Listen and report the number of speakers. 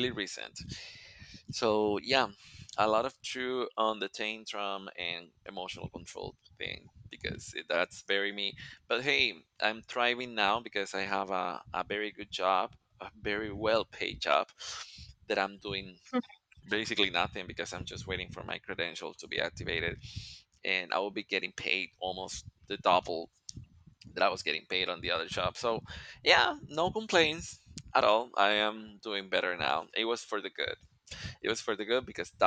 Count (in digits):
1